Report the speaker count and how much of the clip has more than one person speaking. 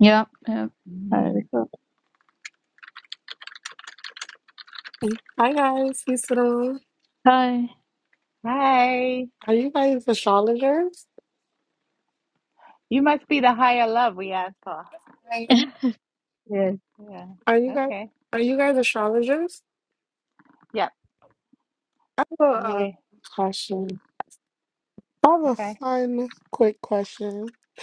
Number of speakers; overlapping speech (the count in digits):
3, about 4%